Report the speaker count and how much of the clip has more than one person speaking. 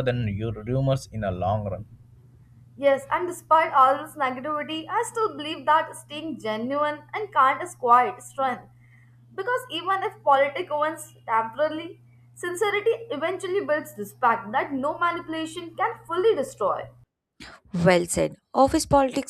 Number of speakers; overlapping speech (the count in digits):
3, no overlap